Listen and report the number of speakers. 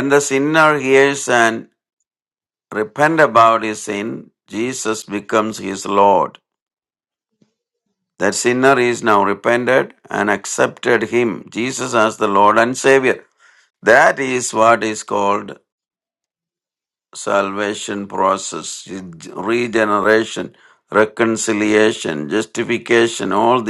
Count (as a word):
one